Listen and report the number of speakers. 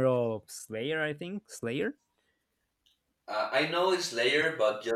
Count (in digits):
2